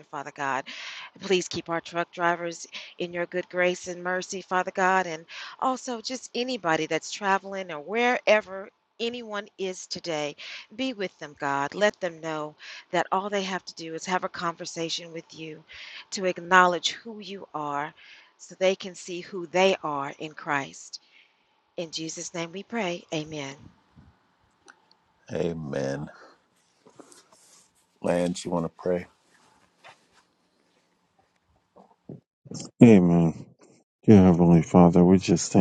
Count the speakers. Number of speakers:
3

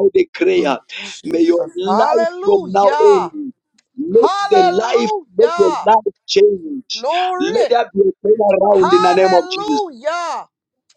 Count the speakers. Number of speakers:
2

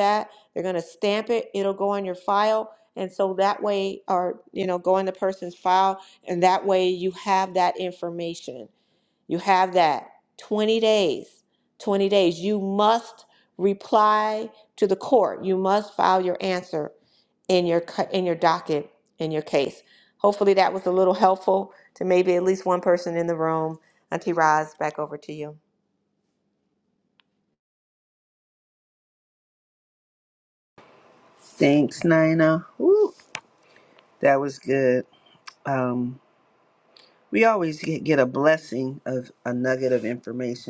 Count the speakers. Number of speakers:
2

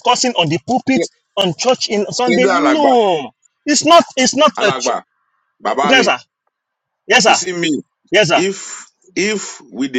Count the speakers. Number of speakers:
2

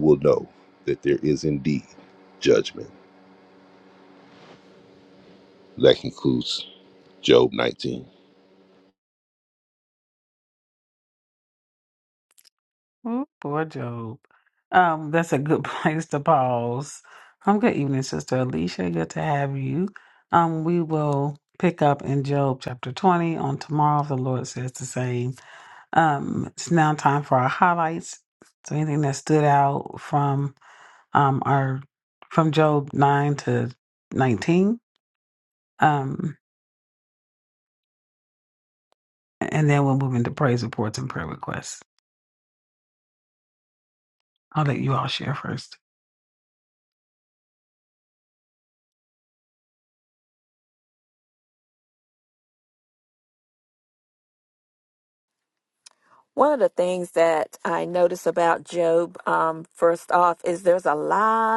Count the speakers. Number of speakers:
3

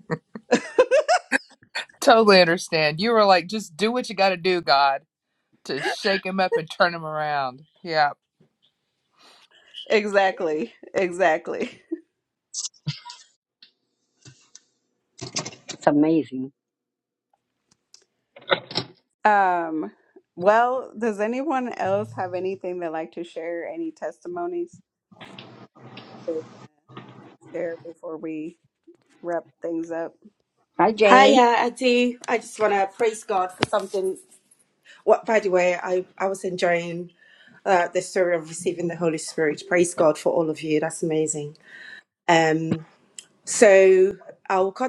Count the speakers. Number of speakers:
4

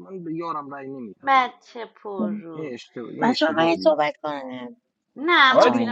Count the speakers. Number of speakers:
3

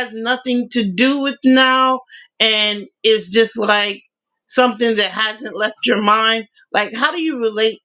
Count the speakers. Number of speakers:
1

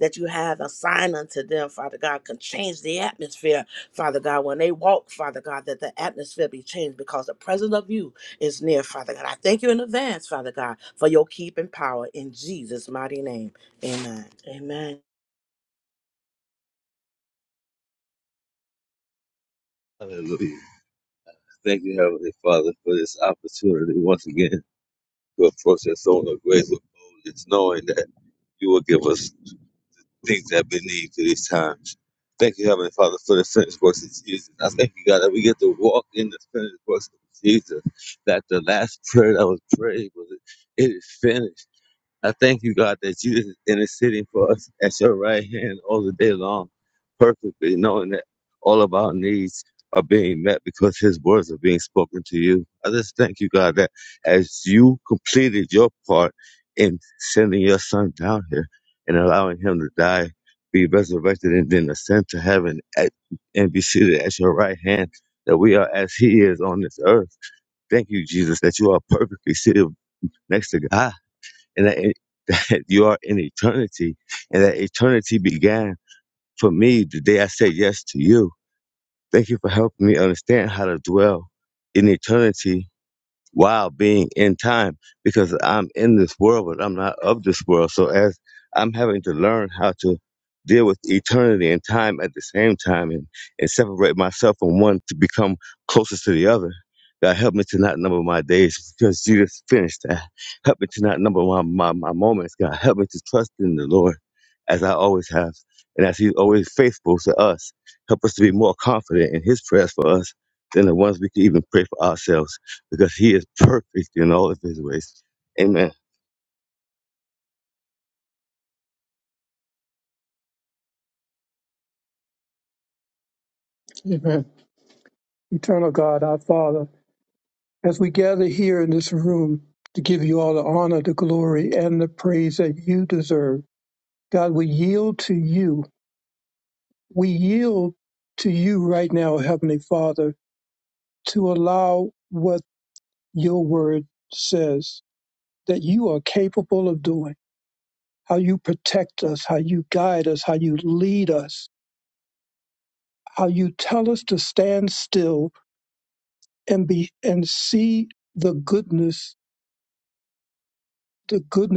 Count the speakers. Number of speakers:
3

